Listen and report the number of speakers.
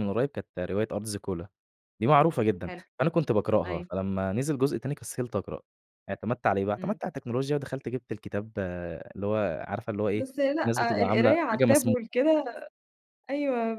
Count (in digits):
2